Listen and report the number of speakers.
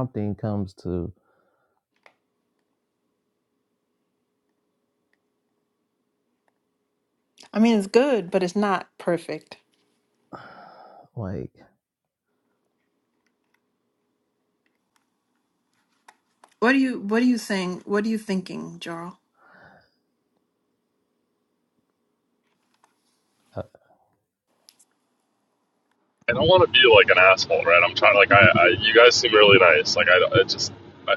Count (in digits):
3